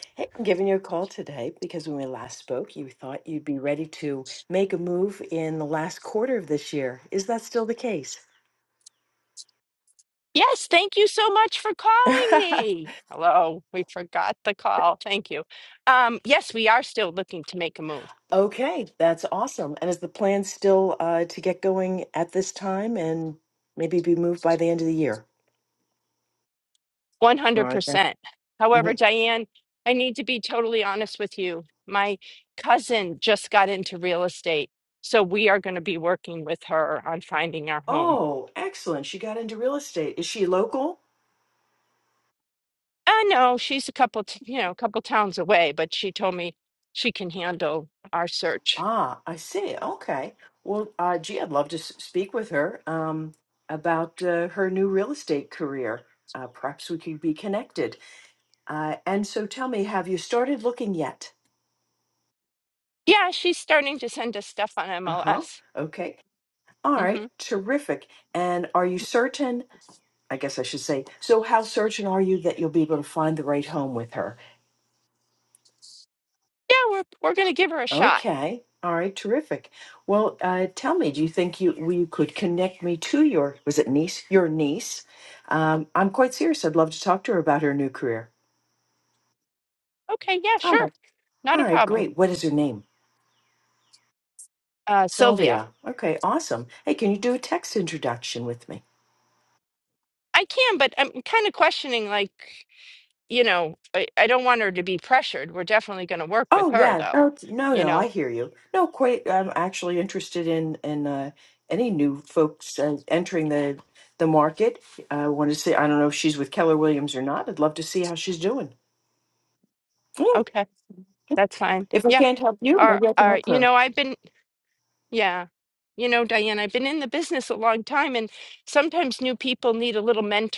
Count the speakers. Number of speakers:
two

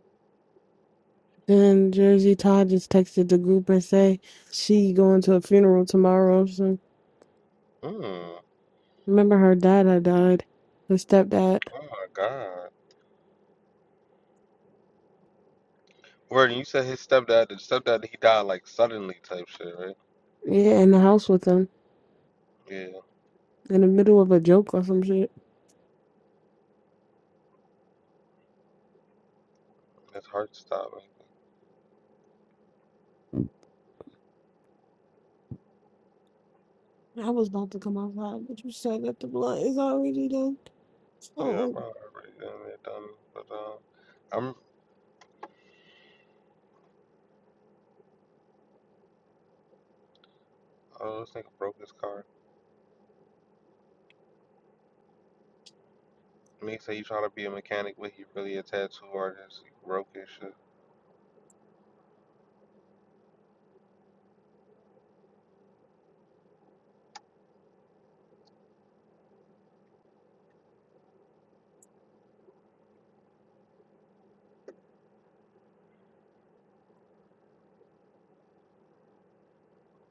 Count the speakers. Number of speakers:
two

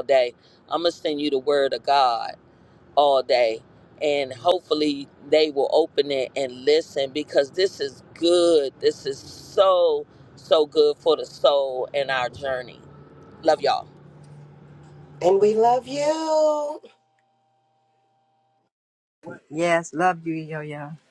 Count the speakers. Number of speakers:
three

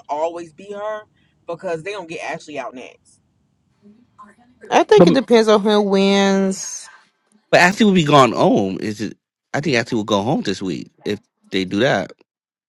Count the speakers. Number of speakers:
three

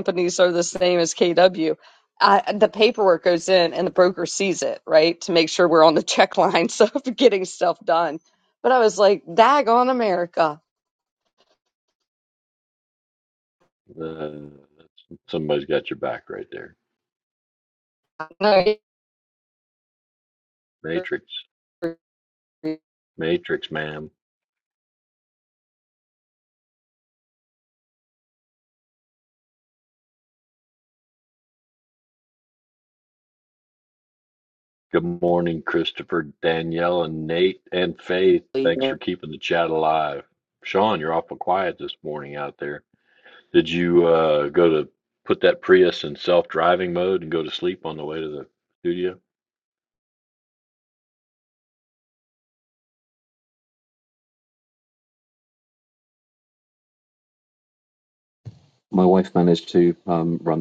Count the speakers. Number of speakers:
three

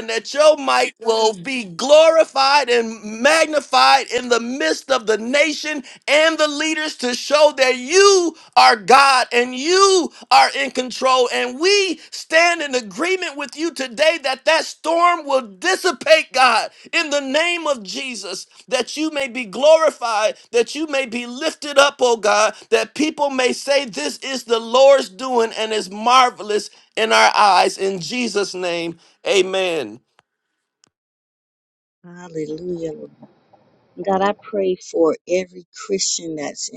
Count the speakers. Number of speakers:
two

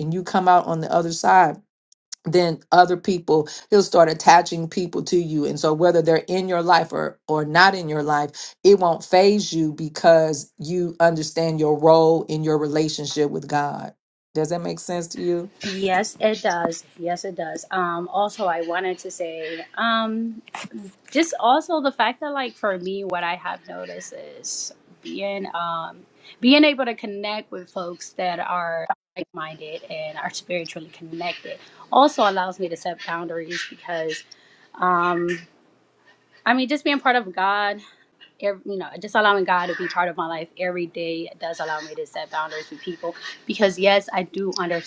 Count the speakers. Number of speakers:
two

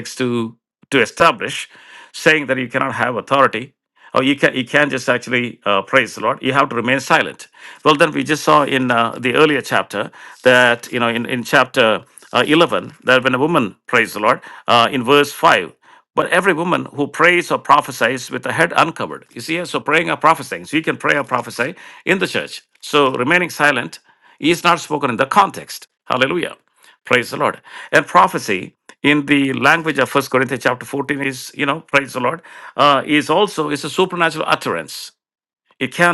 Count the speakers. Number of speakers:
one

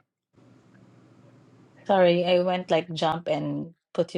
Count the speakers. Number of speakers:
one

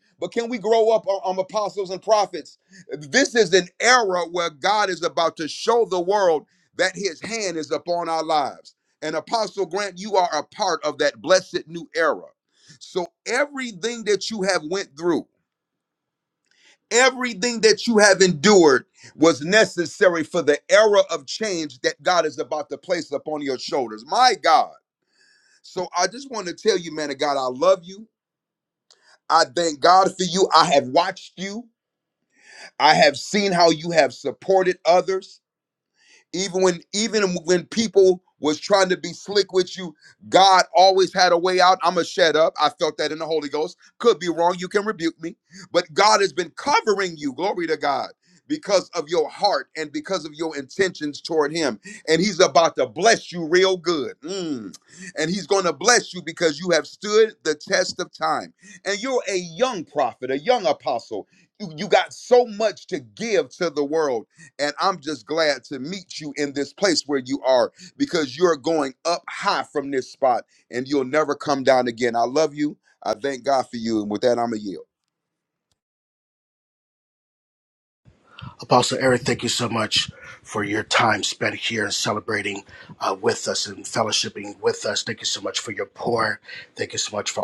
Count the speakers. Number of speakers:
two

